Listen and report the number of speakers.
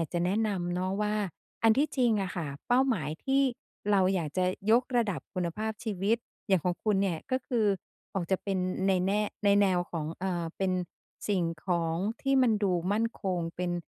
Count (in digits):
1